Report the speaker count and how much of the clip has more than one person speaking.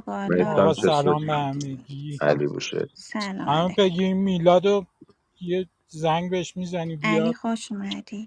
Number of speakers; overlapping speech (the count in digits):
3, about 26%